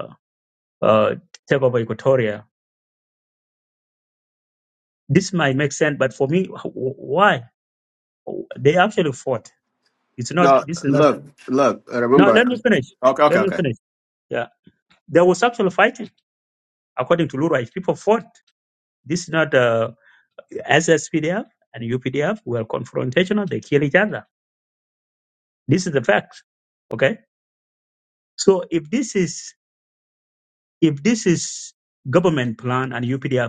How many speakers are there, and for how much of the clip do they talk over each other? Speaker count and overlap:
2, about 4%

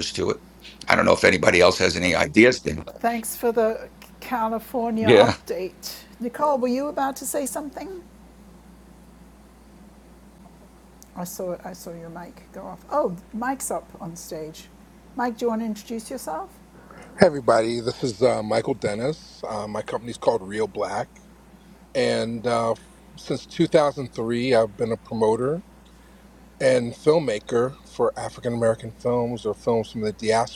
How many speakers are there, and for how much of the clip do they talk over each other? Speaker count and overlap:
3, about 1%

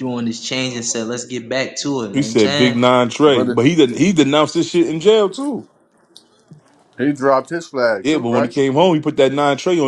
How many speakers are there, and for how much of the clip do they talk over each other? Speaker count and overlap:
3, about 15%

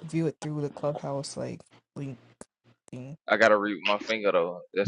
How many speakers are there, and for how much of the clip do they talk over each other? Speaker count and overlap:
2, no overlap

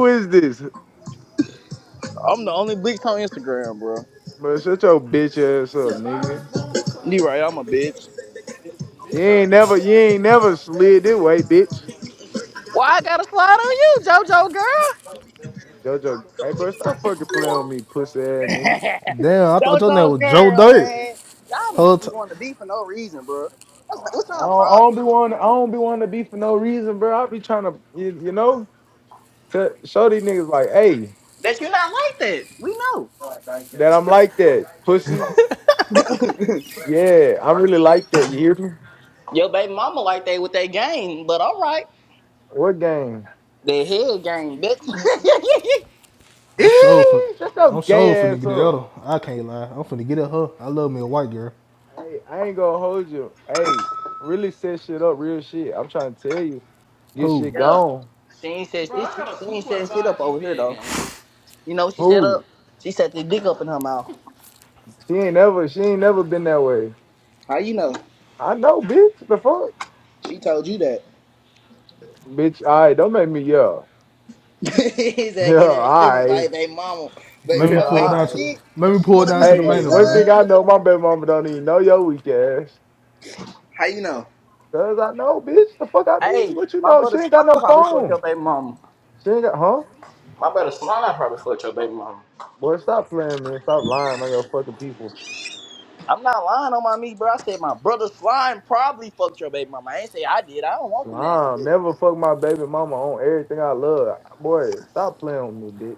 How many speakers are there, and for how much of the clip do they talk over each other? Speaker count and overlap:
3, about 11%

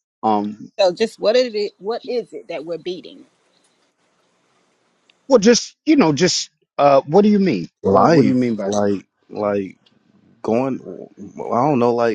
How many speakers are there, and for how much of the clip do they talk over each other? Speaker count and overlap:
3, about 7%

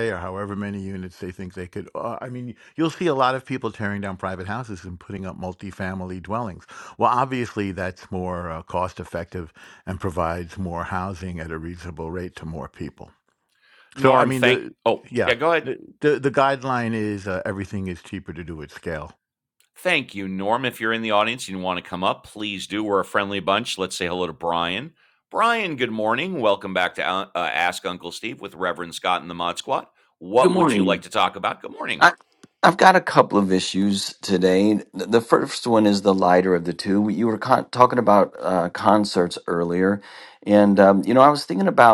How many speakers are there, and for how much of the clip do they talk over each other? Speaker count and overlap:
3, about 4%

